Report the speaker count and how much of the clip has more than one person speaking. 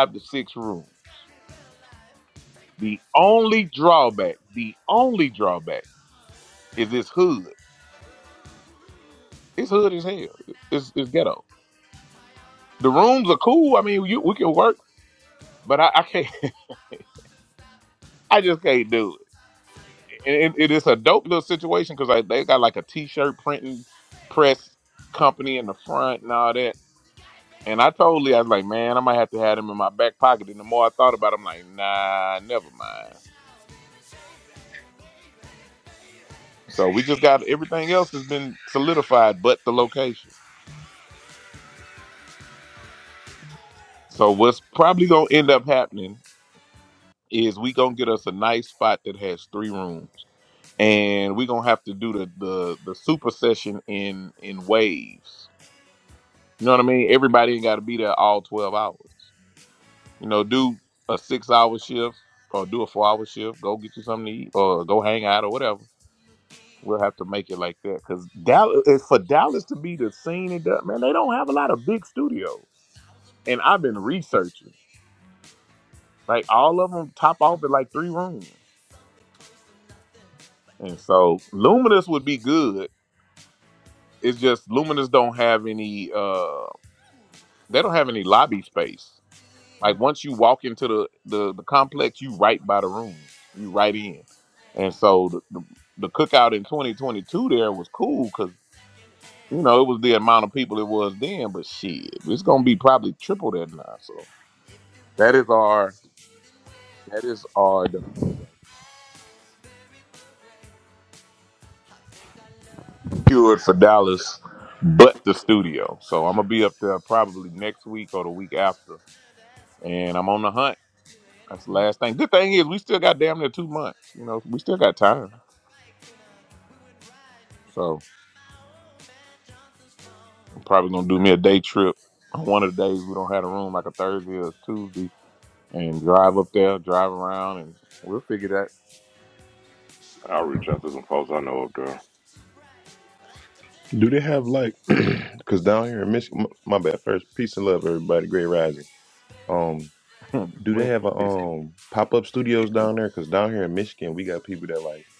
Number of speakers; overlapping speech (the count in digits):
3, about 1%